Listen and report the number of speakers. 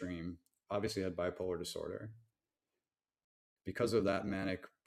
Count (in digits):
1